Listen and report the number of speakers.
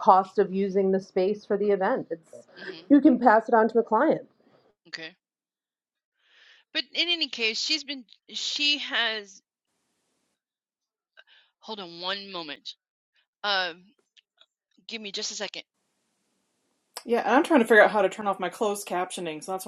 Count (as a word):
three